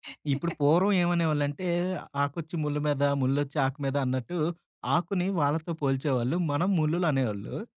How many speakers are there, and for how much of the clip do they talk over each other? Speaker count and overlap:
1, no overlap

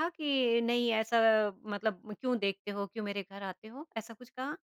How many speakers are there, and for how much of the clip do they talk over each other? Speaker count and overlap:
1, no overlap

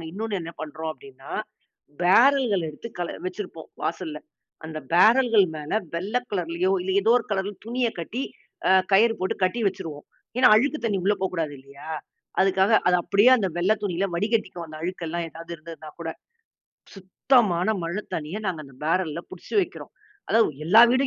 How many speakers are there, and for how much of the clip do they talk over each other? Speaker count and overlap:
1, no overlap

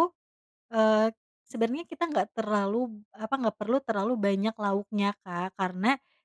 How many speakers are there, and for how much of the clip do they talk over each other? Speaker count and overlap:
1, no overlap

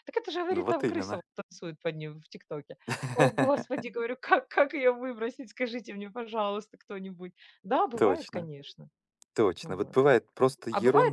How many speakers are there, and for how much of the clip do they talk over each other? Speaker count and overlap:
2, about 17%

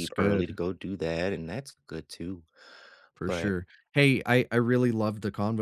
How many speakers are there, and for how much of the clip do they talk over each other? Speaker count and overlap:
2, about 13%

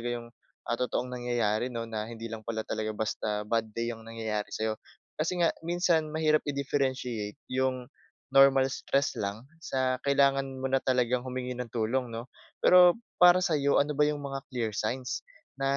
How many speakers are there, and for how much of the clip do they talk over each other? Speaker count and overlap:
1, no overlap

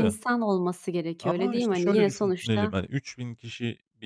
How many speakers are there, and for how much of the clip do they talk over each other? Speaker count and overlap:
2, about 41%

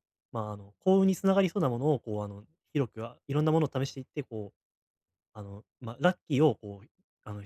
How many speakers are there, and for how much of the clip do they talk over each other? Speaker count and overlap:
1, no overlap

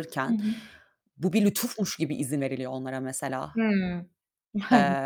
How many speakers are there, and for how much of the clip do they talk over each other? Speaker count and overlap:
2, about 9%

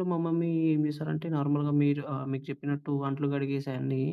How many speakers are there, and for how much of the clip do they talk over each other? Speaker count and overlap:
1, no overlap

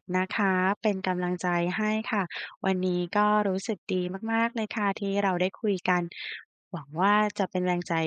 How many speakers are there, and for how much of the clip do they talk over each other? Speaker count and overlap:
1, no overlap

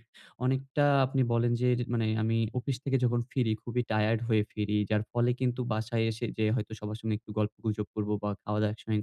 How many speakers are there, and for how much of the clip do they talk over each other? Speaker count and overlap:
1, no overlap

